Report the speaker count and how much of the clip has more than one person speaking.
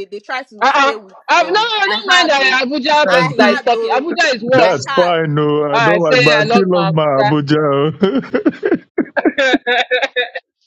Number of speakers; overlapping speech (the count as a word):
three, about 49%